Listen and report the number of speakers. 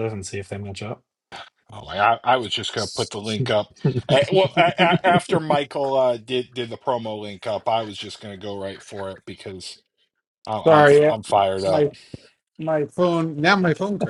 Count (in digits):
3